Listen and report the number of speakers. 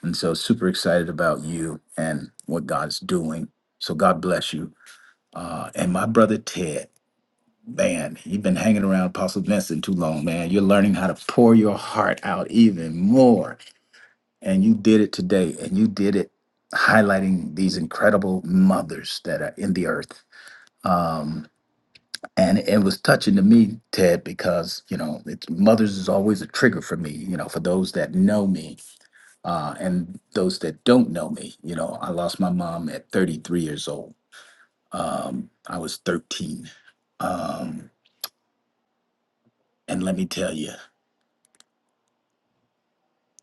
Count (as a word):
one